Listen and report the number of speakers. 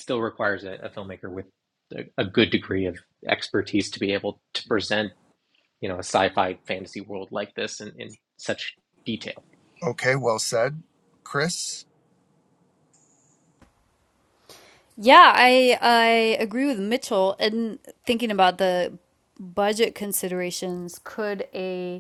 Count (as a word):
three